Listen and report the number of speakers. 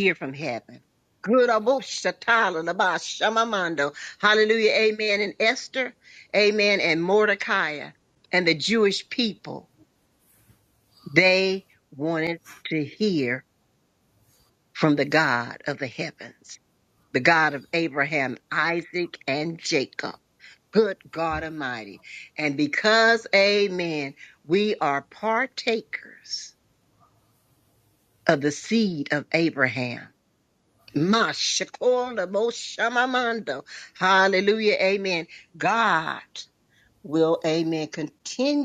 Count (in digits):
1